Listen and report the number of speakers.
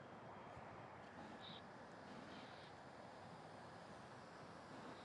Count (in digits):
0